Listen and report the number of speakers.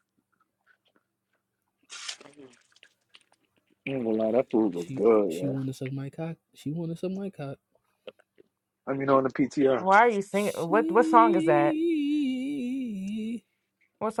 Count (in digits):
3